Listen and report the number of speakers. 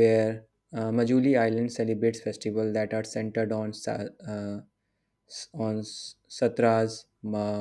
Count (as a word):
one